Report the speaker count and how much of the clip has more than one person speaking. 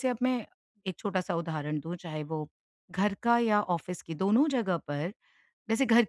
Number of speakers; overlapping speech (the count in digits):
1, no overlap